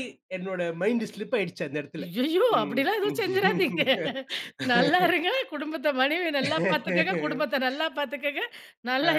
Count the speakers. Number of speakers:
2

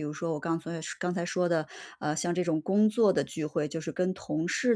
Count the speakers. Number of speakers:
1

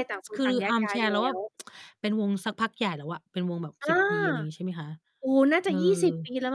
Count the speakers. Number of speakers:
2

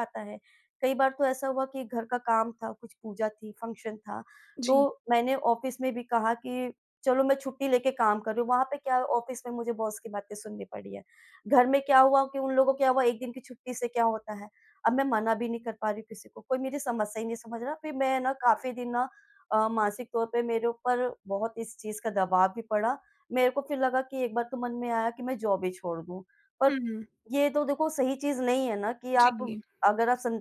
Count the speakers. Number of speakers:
2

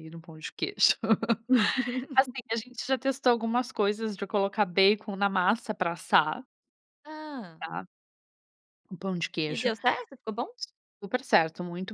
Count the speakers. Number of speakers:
2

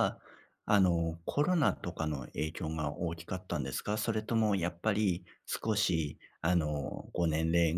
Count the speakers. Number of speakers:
1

